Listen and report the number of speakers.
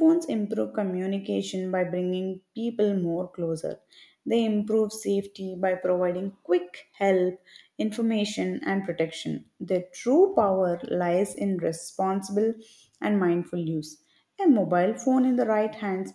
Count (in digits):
1